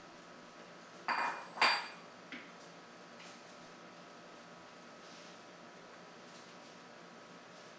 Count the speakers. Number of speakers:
0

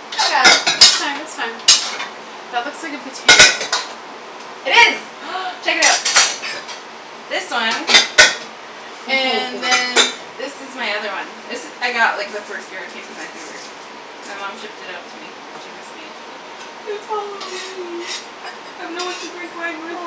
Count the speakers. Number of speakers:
2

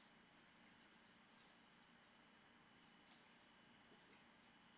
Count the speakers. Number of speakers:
0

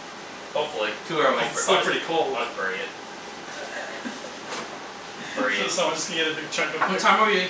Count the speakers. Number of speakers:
3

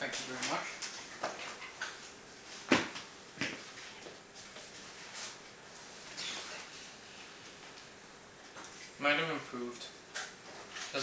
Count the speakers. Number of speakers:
1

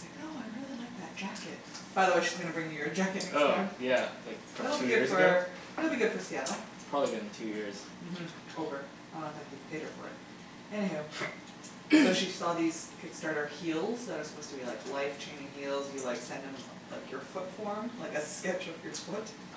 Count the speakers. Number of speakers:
2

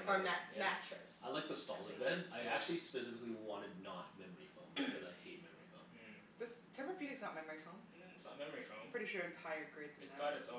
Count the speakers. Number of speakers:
4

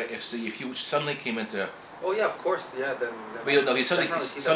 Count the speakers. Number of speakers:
2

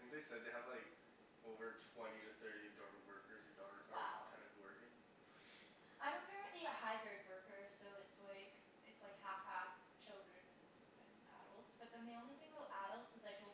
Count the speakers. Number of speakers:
2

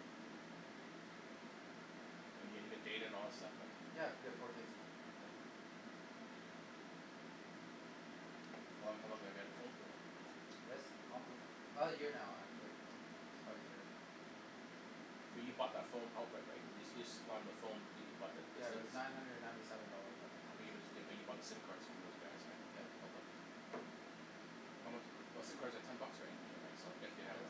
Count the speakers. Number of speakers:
2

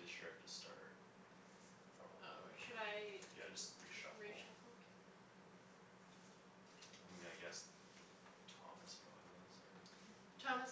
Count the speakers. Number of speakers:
2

